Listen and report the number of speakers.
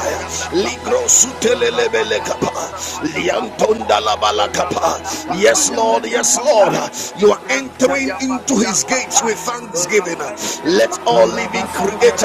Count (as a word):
two